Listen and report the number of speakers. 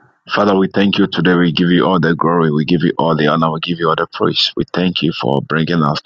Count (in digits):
1